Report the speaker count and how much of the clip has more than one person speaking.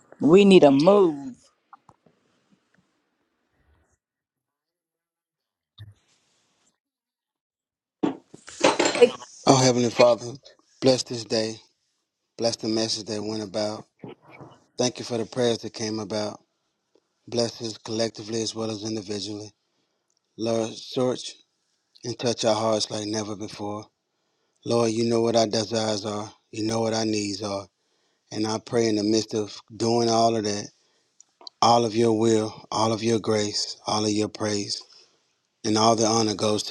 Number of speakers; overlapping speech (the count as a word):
two, no overlap